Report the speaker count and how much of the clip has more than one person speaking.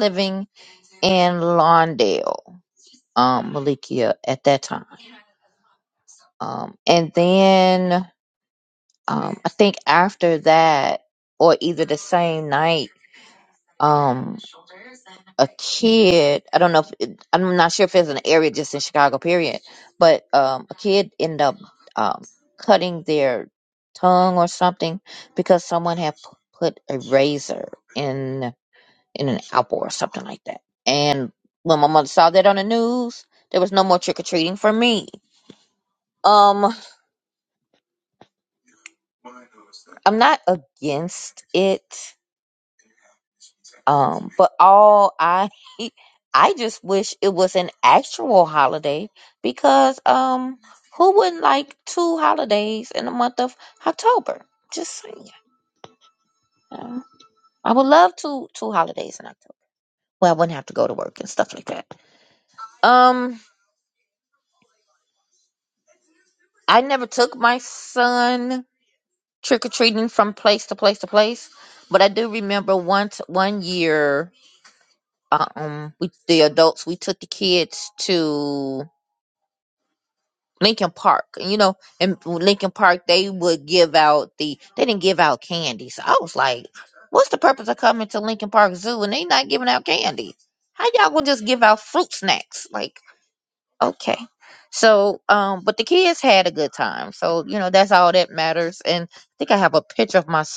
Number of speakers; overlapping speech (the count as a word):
one, no overlap